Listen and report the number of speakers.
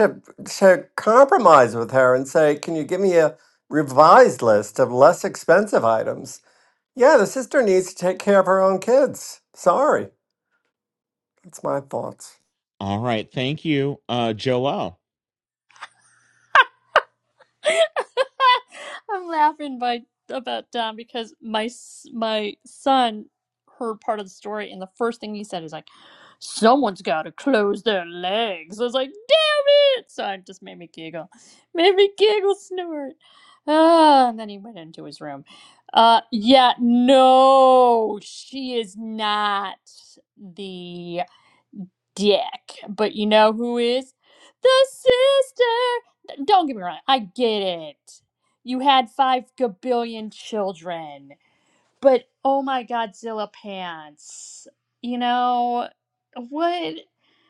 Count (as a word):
three